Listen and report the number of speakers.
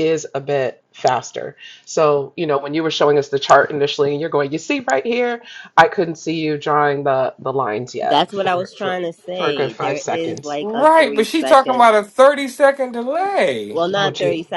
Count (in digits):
3